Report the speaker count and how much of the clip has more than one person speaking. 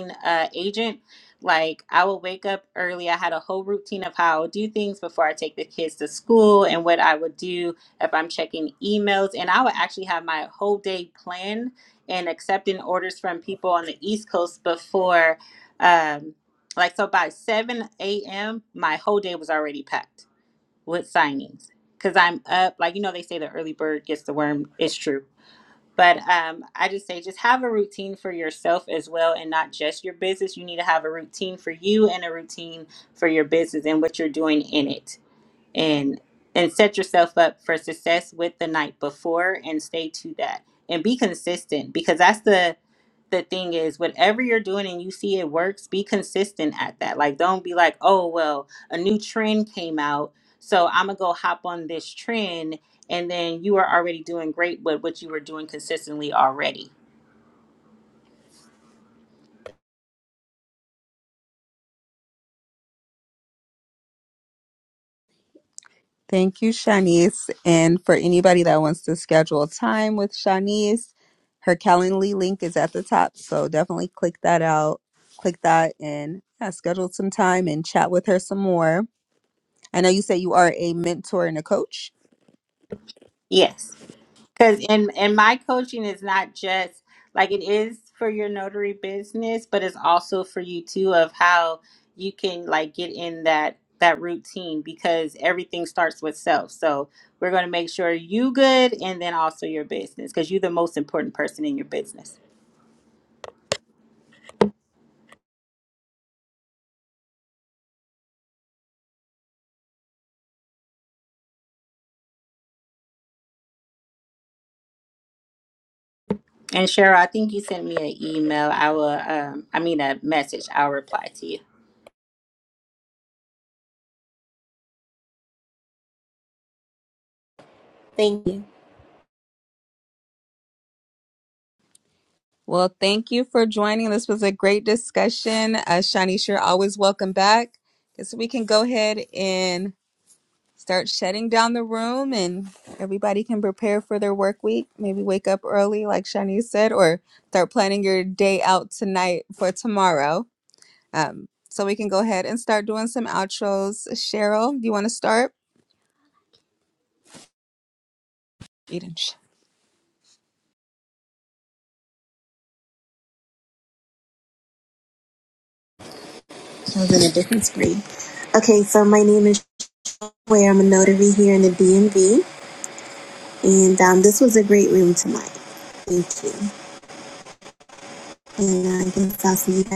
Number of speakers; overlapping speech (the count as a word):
three, no overlap